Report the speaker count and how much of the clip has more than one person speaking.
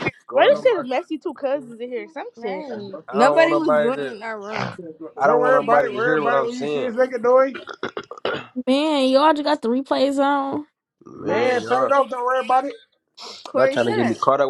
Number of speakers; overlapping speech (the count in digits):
5, about 34%